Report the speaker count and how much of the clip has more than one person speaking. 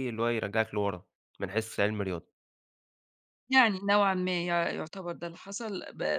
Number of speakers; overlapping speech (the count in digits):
2, no overlap